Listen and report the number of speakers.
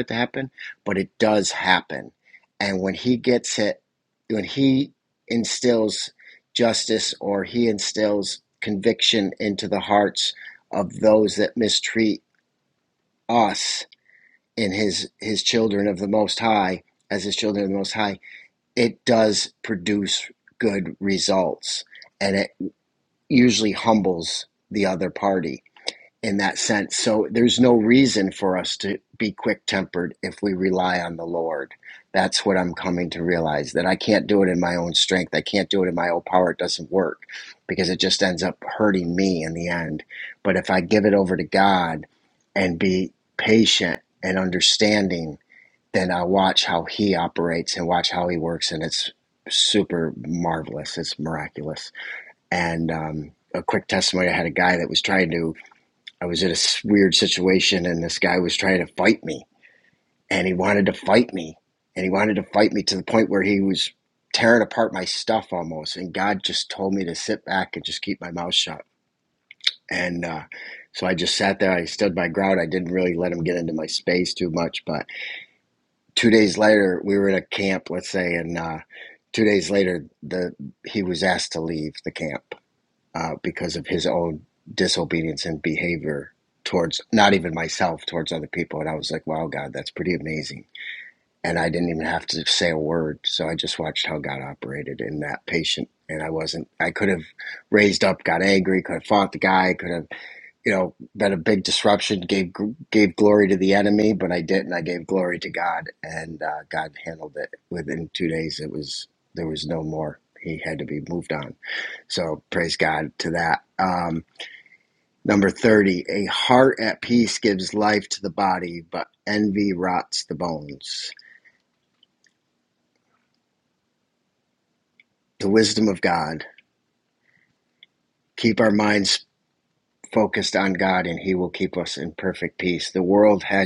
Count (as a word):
one